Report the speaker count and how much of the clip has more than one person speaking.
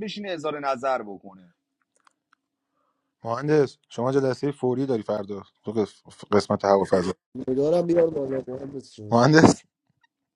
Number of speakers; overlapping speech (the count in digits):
3, under 1%